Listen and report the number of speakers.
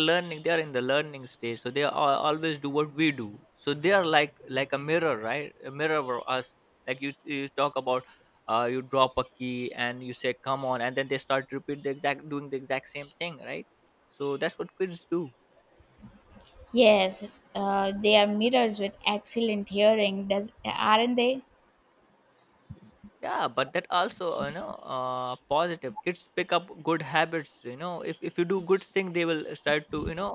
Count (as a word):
two